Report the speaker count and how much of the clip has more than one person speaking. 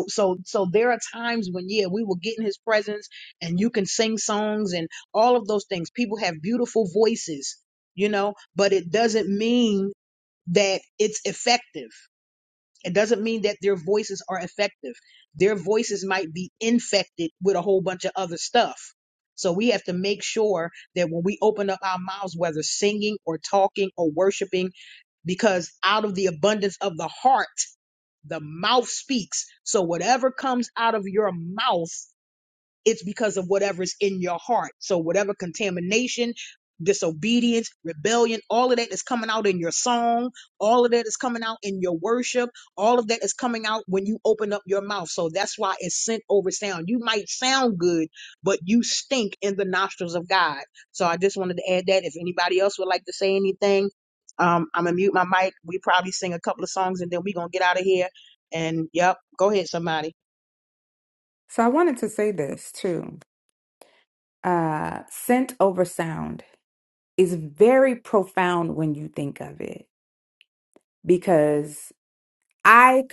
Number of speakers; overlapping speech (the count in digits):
2, no overlap